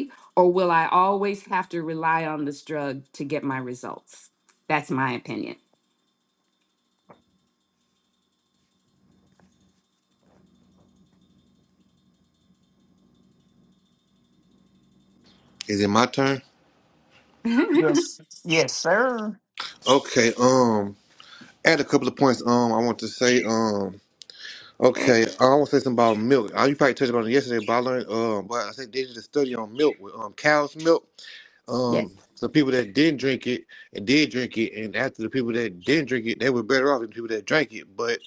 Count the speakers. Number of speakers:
3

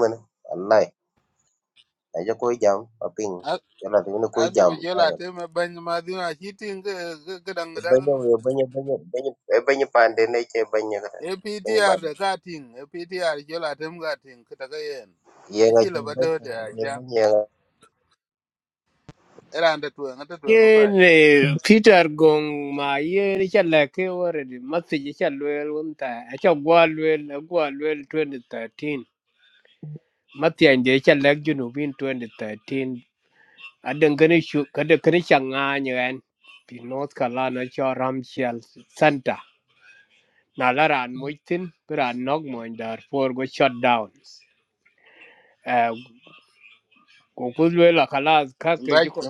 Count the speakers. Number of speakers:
3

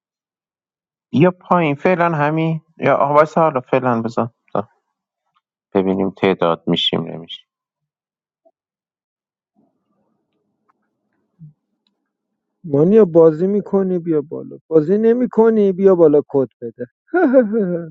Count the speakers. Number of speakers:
2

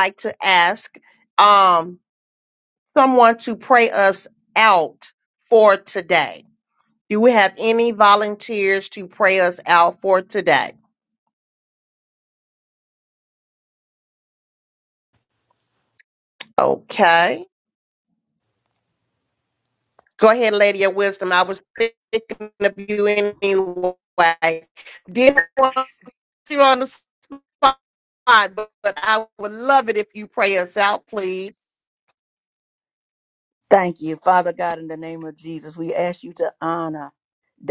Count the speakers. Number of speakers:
2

